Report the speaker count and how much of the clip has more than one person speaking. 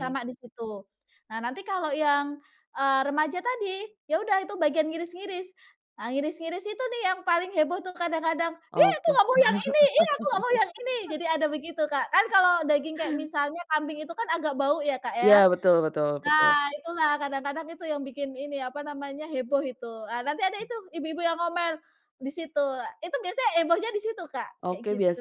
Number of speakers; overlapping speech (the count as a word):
two, about 7%